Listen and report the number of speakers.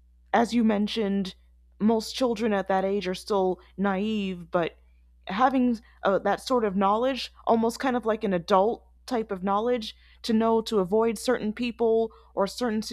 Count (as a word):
one